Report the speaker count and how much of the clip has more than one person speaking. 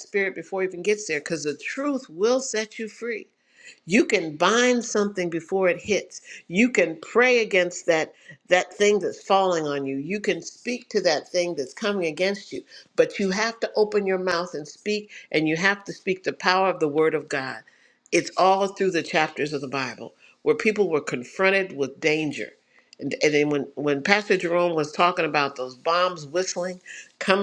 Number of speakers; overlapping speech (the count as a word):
one, no overlap